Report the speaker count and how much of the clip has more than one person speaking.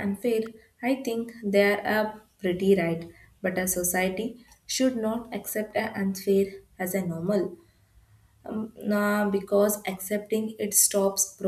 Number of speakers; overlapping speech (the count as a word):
one, no overlap